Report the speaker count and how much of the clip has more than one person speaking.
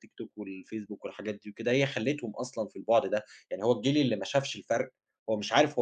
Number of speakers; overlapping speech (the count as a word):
one, no overlap